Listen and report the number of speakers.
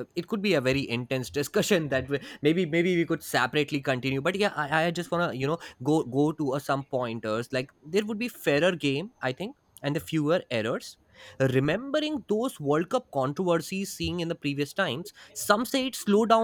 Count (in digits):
1